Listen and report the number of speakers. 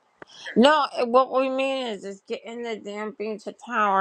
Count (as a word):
one